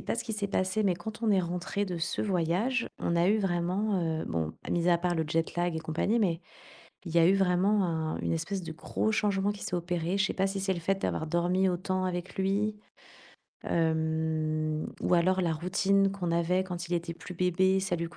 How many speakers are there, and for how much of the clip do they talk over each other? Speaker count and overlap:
one, no overlap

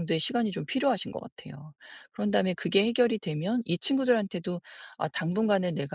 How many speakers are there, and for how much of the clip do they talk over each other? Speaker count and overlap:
one, no overlap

